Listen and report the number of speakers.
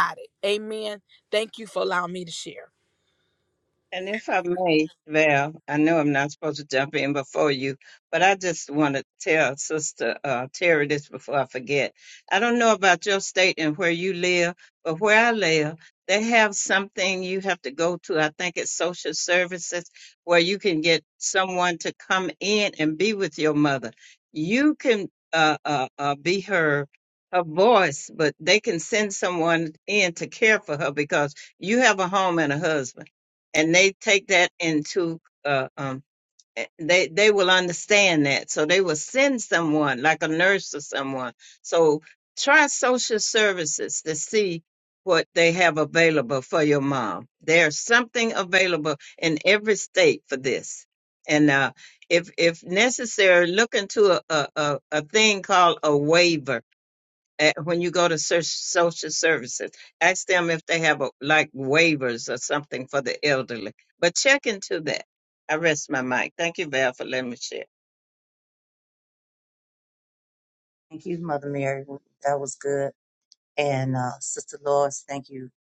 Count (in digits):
3